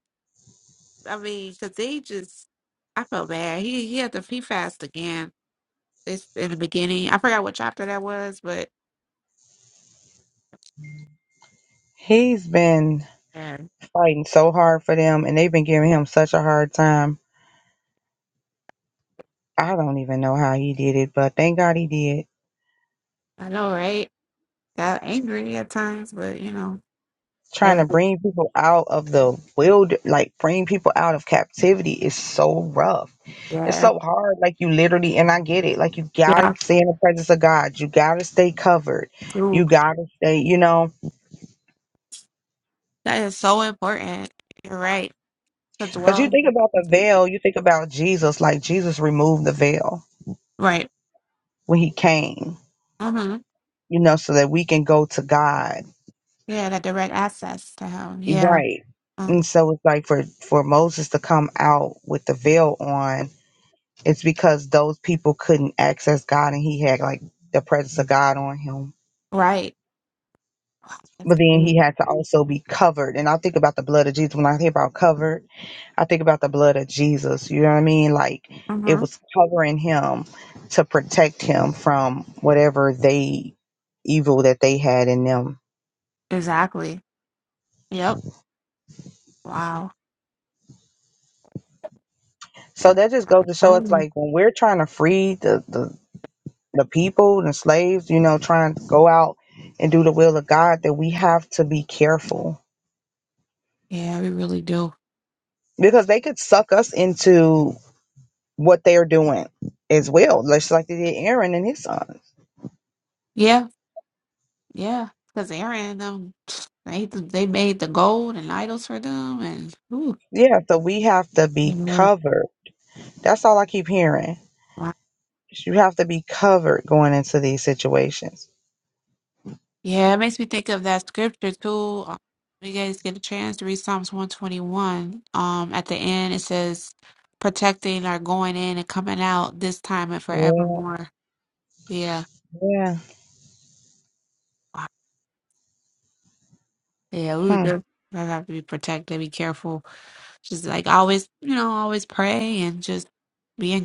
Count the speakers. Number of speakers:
2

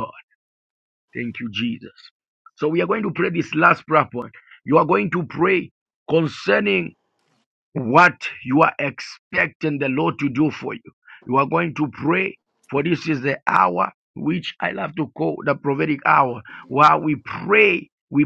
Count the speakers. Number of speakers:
1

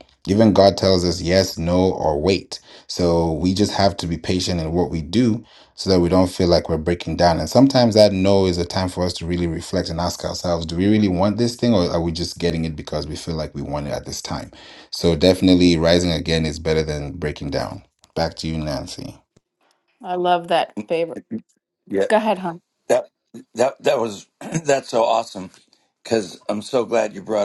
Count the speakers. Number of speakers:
3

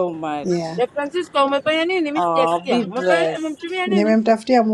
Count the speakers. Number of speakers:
3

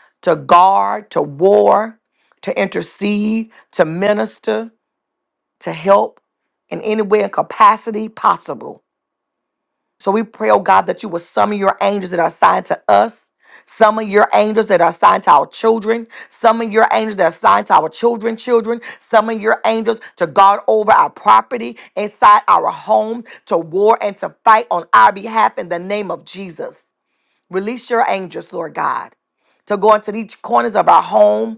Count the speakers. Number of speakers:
1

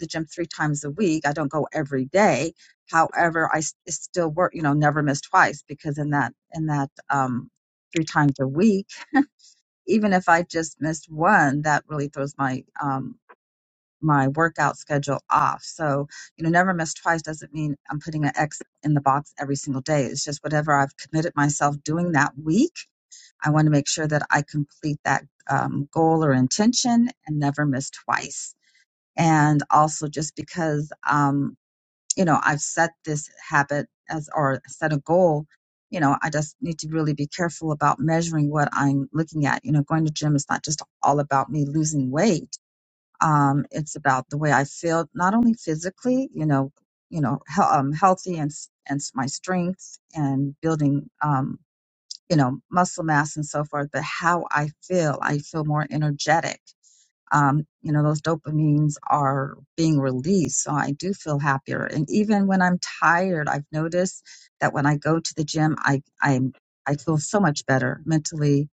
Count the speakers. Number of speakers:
1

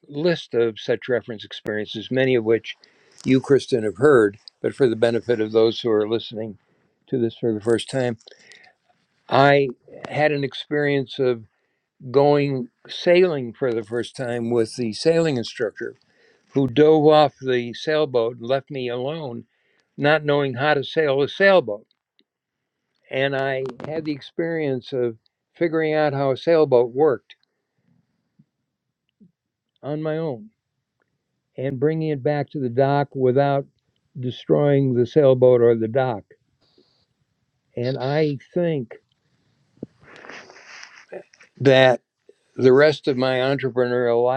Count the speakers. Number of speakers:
1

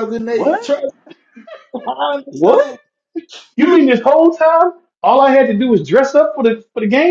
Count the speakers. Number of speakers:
2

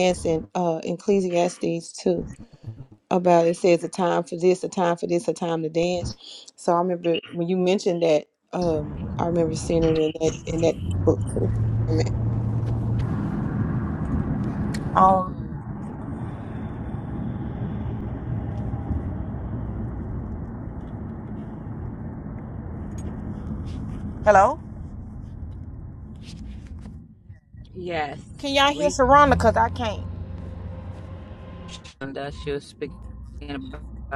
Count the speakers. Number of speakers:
3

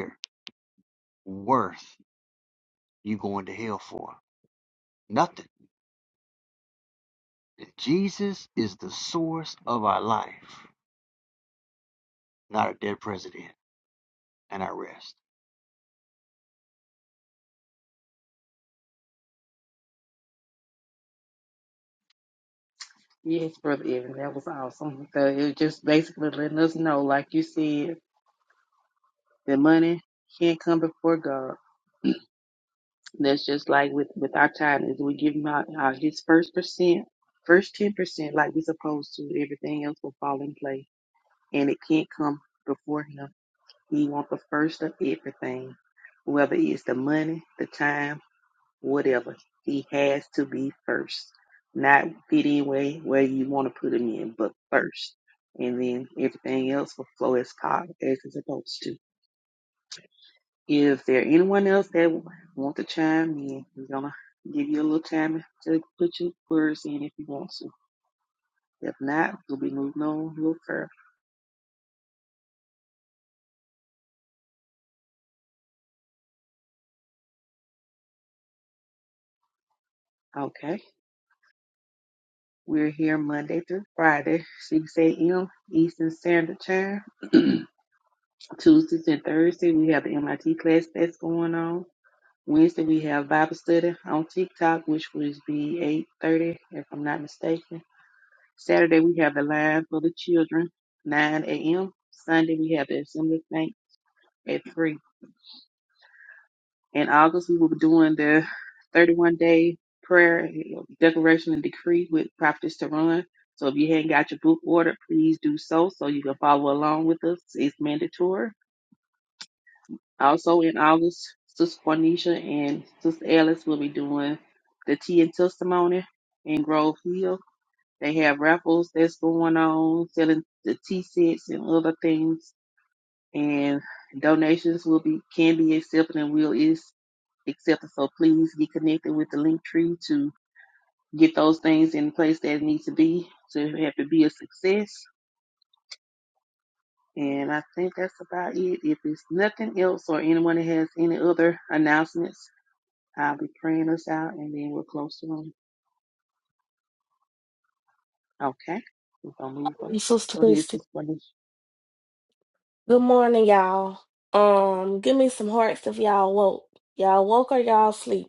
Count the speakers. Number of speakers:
3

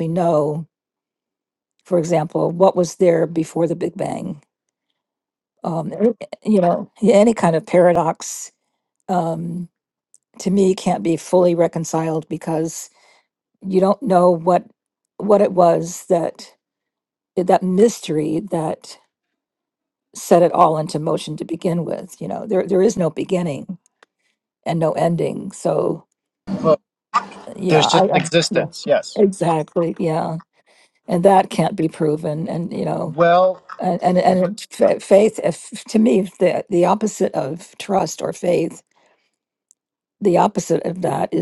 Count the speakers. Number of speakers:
2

